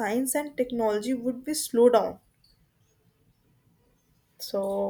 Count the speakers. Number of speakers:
1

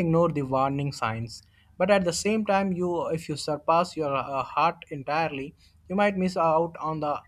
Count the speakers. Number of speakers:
1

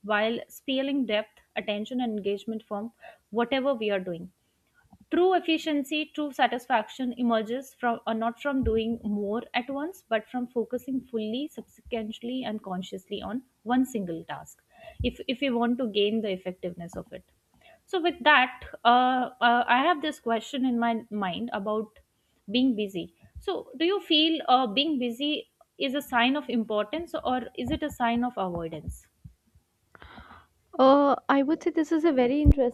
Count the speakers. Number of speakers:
2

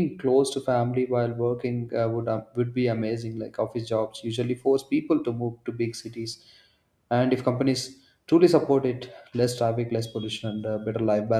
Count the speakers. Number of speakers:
1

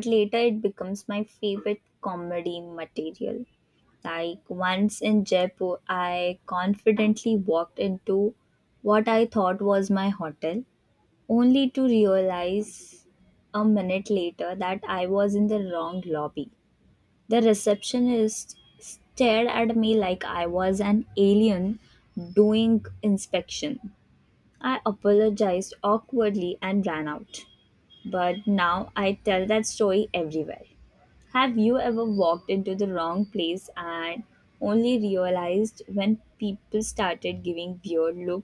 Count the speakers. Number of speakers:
1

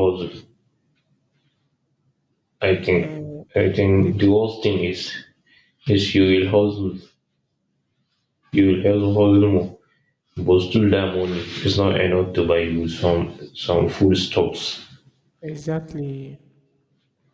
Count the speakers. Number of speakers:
2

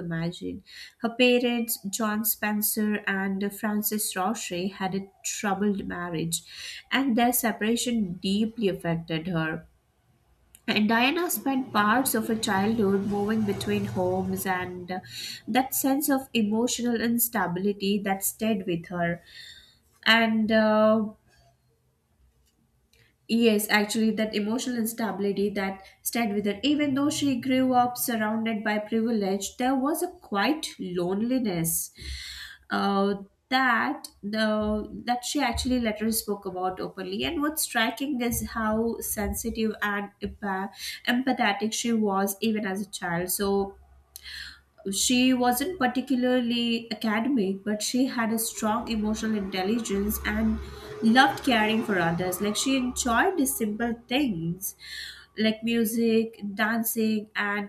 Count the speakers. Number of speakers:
1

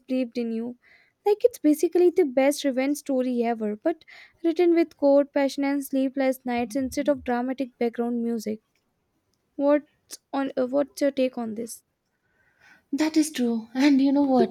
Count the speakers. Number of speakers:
2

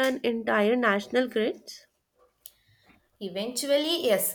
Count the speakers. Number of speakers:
2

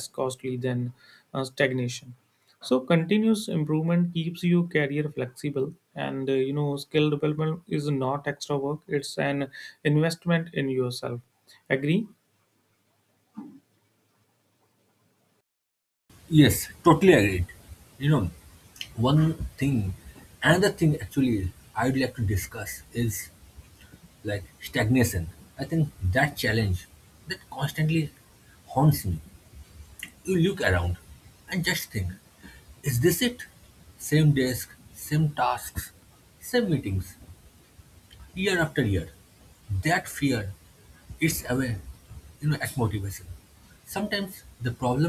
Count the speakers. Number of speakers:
2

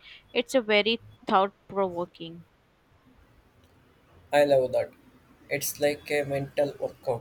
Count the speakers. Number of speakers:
2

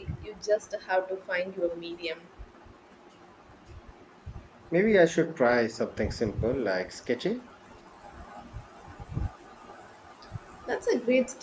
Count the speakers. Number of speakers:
2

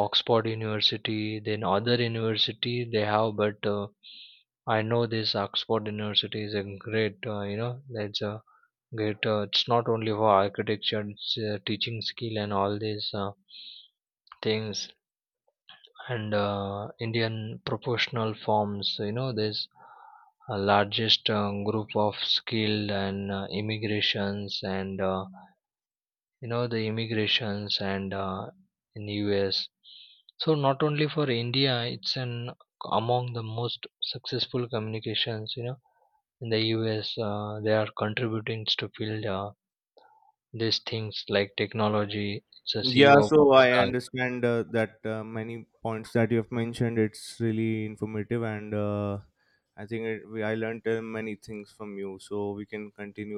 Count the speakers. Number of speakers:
2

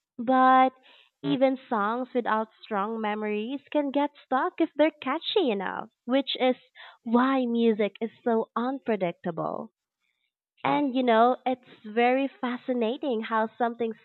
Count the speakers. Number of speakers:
1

